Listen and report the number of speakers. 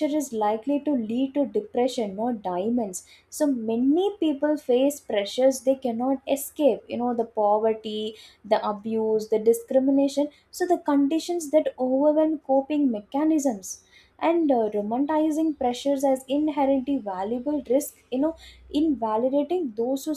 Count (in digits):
1